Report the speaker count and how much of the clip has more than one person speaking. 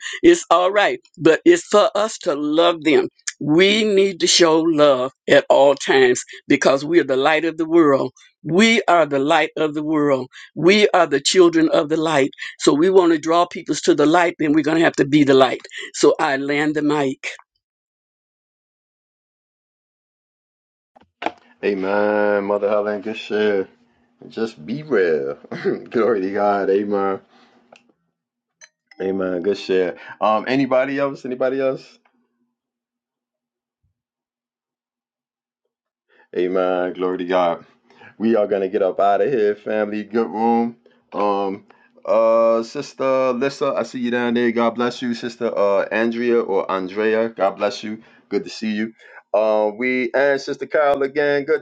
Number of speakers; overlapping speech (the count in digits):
2, no overlap